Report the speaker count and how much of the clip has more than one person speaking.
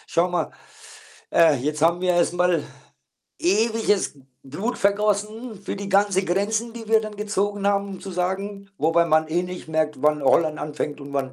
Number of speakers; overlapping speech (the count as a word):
one, no overlap